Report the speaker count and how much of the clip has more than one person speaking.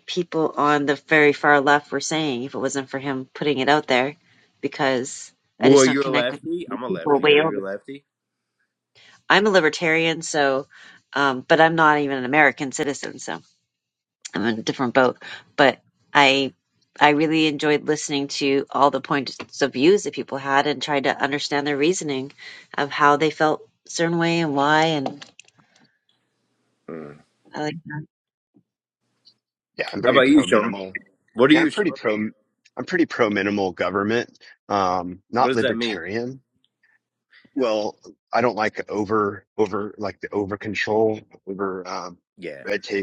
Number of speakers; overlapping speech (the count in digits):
3, about 8%